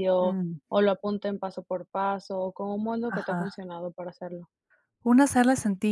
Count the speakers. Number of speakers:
2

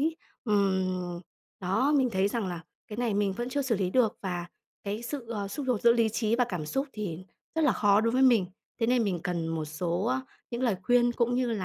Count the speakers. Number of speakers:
1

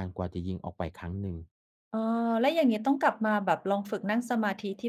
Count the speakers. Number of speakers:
2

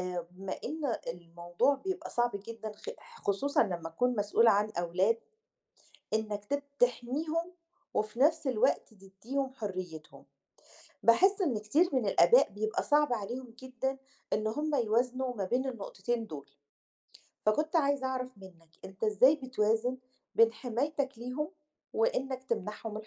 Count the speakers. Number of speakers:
1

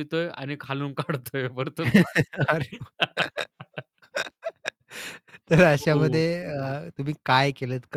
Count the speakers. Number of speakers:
2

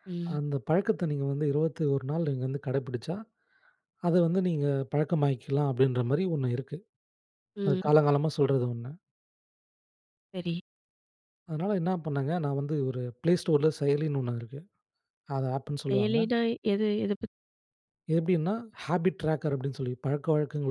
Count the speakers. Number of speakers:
2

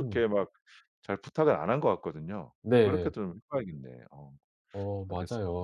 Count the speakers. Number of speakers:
2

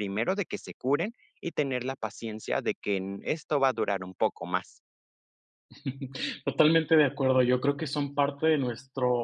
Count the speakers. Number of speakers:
2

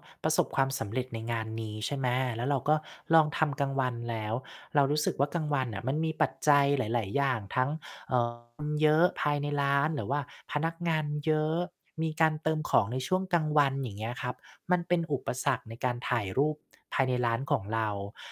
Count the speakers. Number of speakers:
1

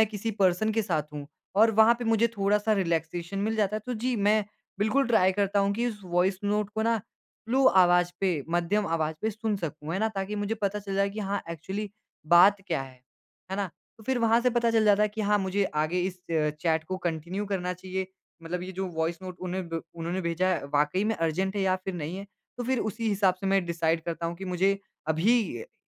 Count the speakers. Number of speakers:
1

